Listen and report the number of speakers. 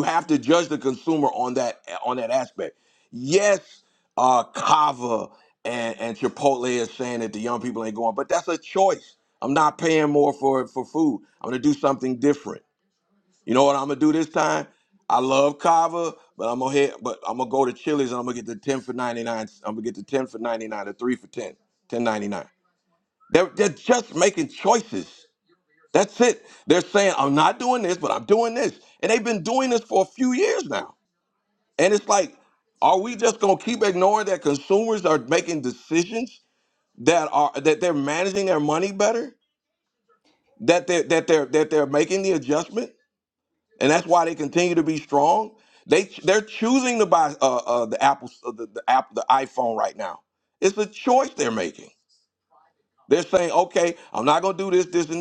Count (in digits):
1